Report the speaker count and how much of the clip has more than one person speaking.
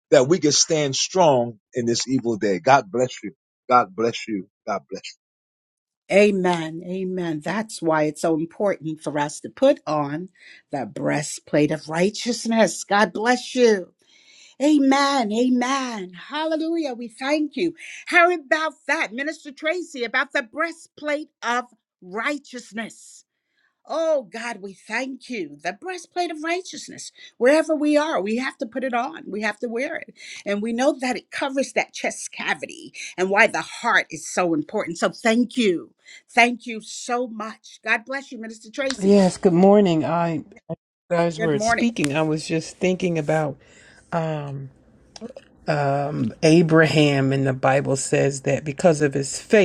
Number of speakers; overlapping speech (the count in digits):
3, about 1%